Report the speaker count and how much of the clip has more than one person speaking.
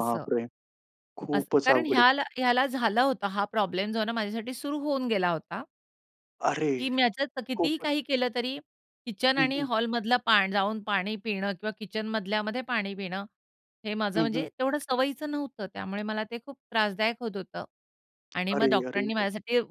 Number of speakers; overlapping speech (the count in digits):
2, about 14%